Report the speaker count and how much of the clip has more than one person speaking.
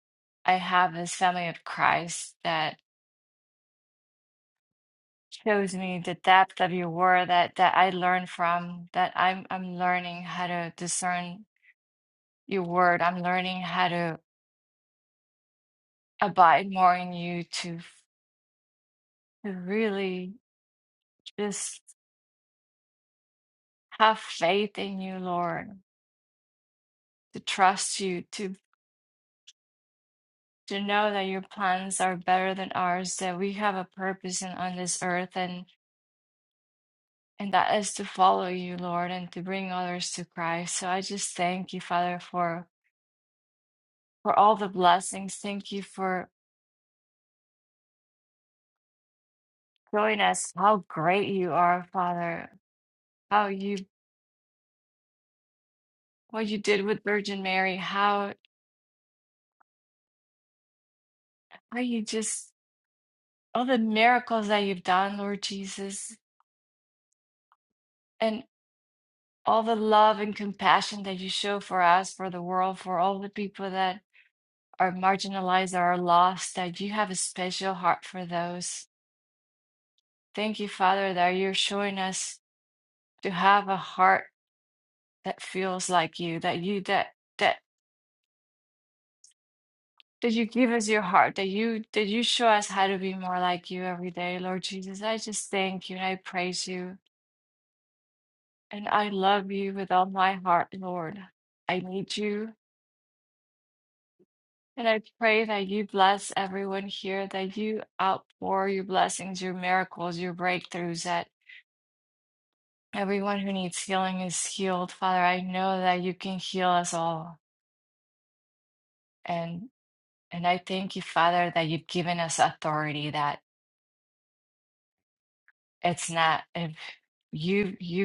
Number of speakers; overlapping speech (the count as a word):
one, no overlap